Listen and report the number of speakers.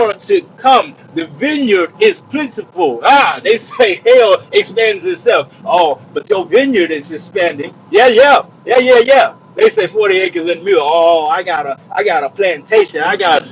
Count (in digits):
1